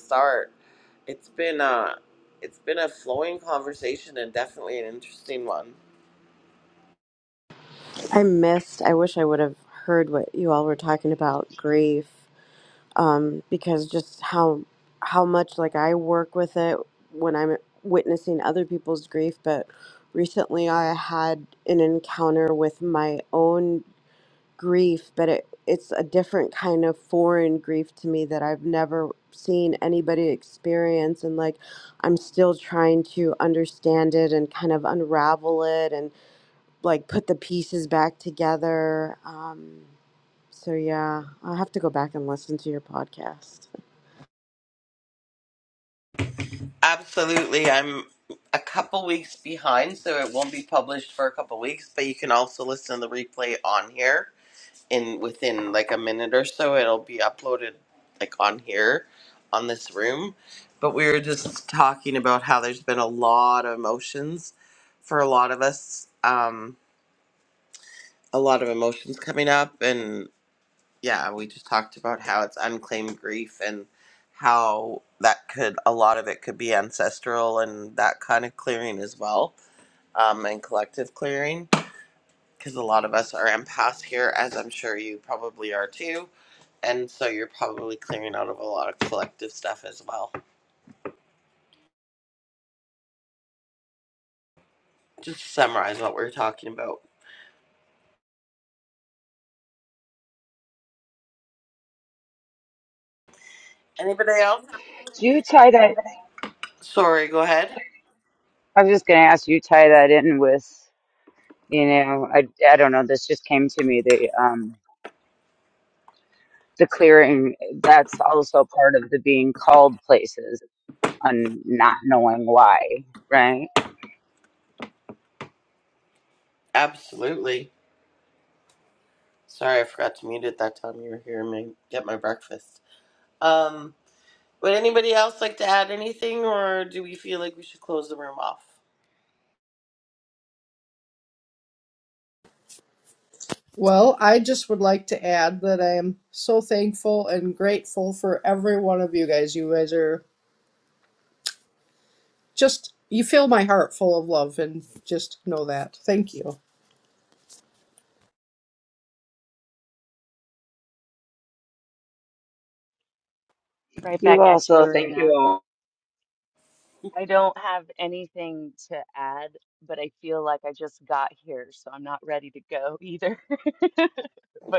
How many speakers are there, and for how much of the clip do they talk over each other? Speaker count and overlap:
five, about 1%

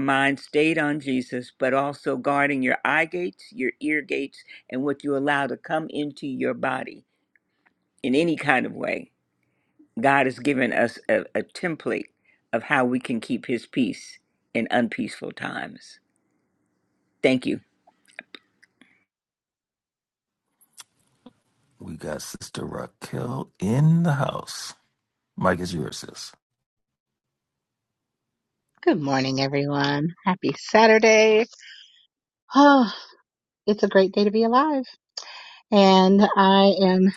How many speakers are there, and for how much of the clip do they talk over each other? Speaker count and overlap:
three, under 1%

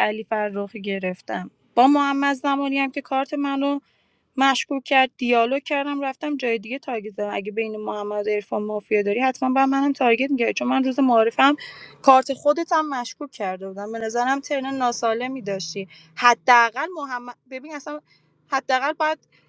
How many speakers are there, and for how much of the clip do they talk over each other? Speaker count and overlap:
one, no overlap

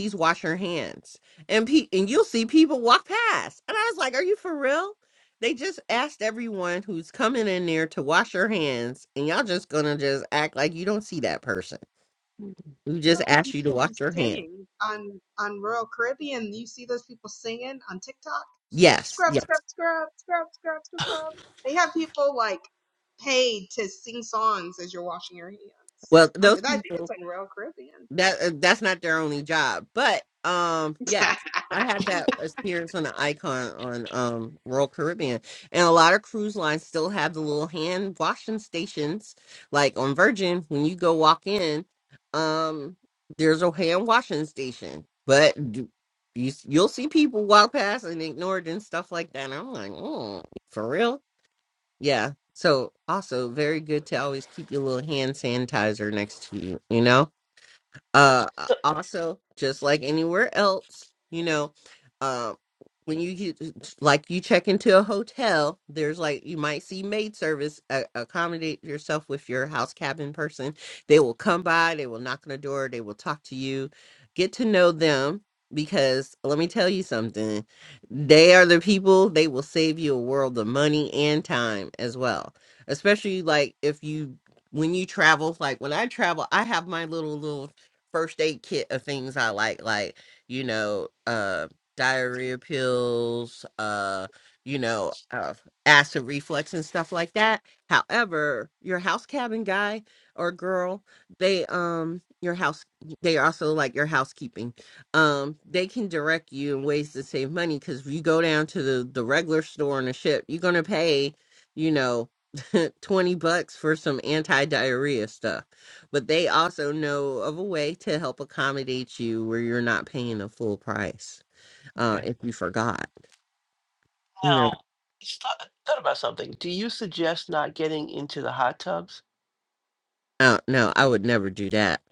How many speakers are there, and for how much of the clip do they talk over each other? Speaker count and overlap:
three, about 2%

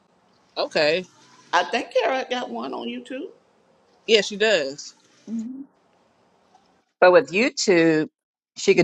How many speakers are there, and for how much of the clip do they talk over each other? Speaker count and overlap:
three, no overlap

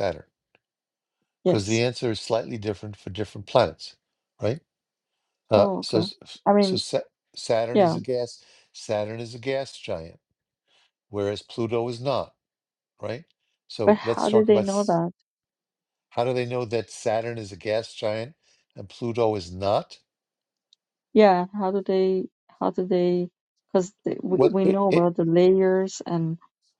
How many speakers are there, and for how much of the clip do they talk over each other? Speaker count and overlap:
two, about 11%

